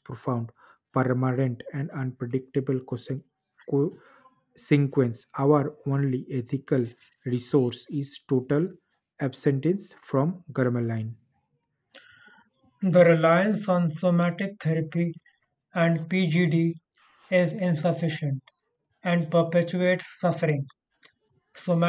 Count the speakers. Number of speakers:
two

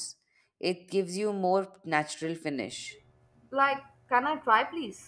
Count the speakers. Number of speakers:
two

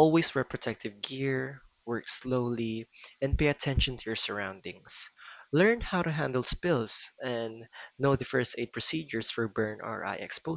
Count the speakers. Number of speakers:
one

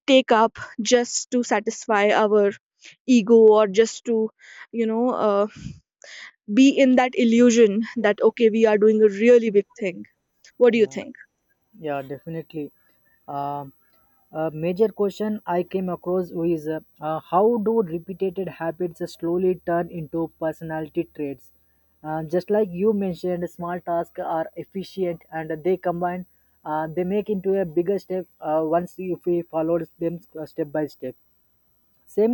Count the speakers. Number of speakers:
two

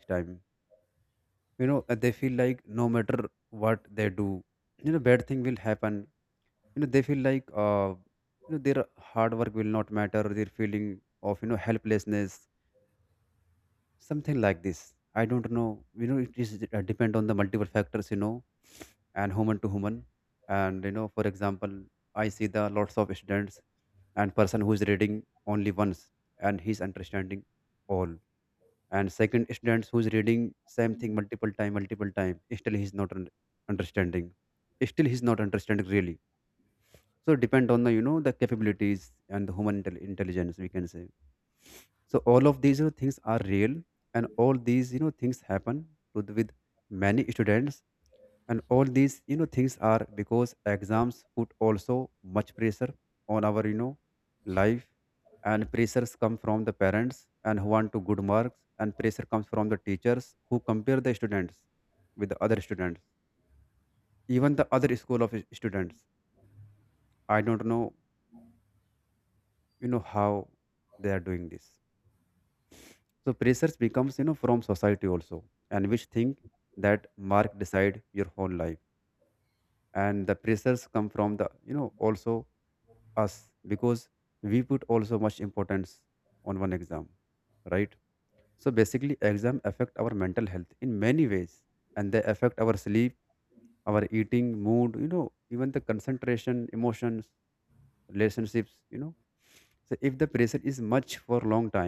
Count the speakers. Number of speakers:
one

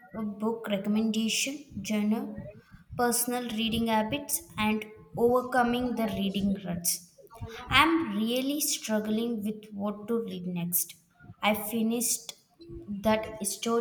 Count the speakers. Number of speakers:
one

